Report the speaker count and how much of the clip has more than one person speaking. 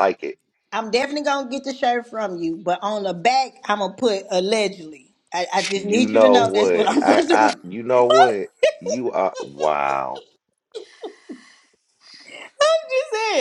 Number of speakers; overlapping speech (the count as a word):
two, about 13%